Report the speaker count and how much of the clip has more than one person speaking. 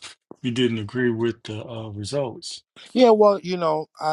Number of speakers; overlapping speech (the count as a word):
two, no overlap